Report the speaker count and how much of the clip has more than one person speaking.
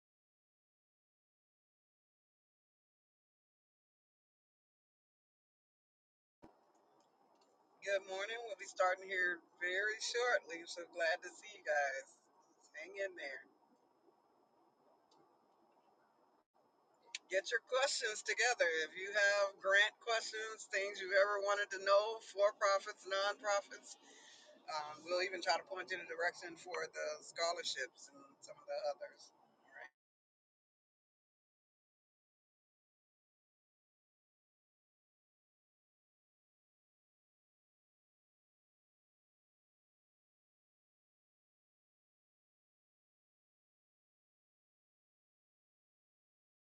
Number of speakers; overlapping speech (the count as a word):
one, no overlap